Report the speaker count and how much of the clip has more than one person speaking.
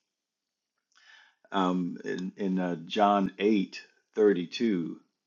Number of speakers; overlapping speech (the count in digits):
1, no overlap